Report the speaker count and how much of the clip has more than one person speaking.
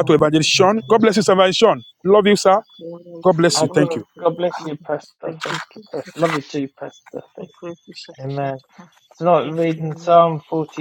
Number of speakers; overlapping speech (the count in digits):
3, about 47%